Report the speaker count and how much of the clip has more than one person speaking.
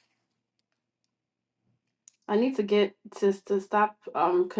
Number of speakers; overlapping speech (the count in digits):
1, no overlap